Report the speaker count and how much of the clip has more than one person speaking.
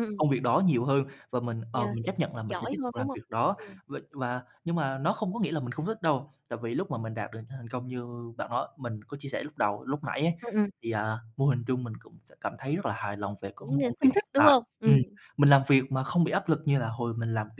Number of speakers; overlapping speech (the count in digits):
2, about 14%